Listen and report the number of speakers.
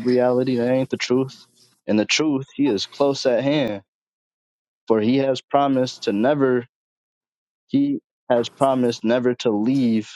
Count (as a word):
one